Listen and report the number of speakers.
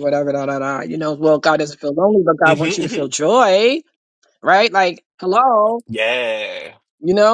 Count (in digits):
2